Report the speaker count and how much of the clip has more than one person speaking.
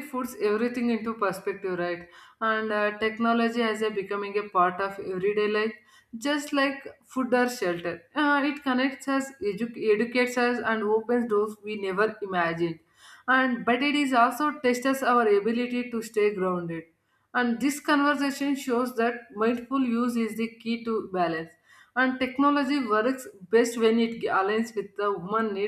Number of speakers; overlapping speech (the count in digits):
1, no overlap